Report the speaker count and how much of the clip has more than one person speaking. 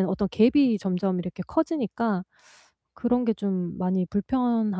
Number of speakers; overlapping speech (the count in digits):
1, no overlap